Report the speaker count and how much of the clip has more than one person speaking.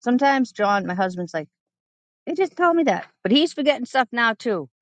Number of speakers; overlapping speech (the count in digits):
1, no overlap